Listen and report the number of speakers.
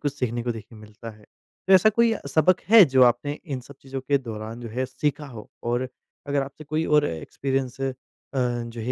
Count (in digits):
1